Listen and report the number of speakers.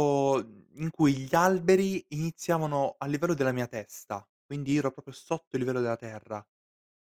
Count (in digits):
1